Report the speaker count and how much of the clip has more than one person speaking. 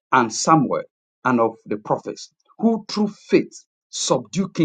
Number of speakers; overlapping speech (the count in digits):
1, no overlap